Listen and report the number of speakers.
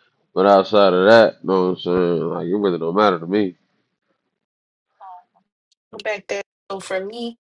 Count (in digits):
2